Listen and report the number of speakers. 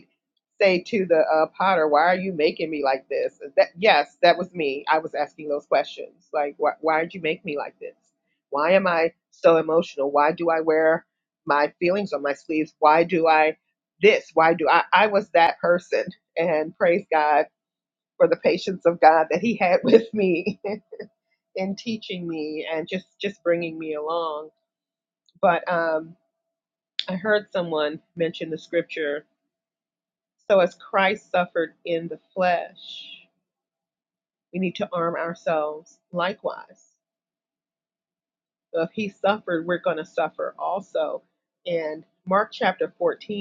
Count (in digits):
1